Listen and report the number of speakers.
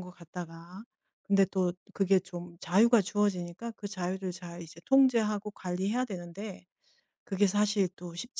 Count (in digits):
1